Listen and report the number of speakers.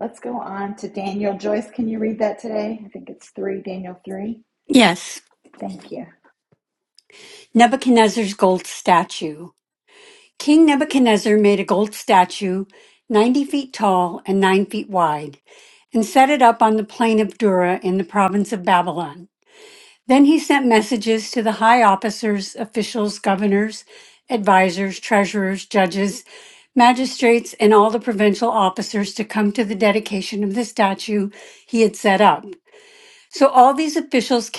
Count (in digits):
2